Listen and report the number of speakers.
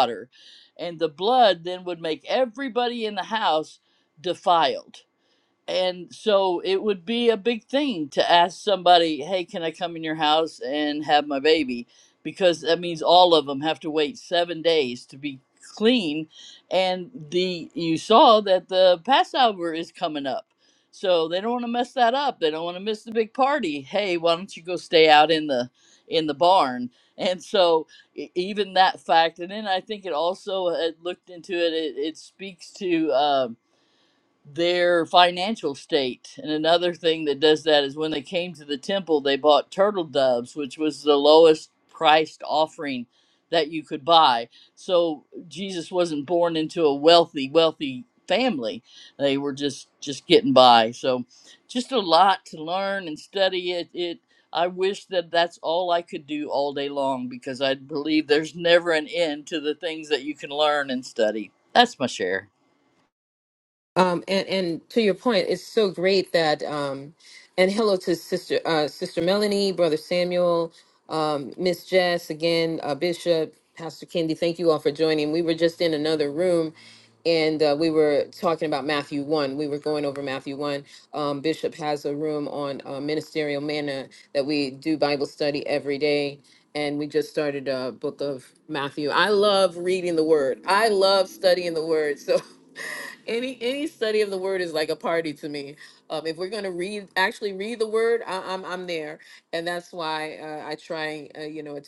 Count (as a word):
two